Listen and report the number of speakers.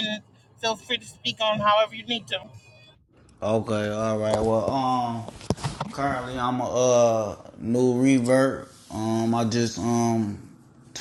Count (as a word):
two